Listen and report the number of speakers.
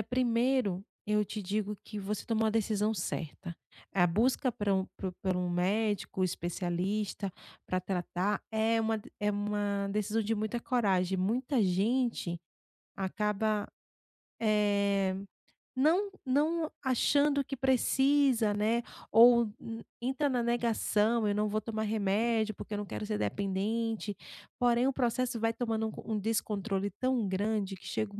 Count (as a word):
one